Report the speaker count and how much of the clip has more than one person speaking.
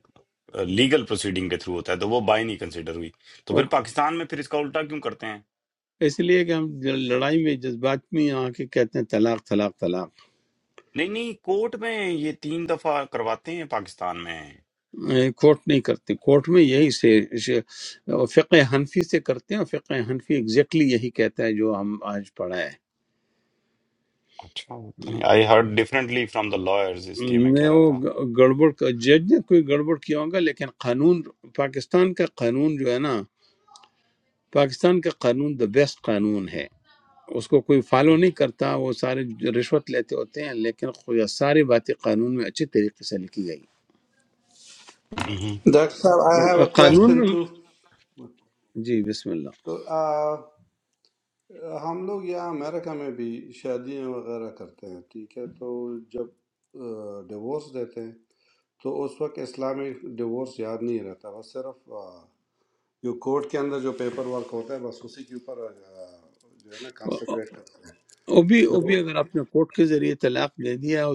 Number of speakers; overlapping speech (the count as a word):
three, about 3%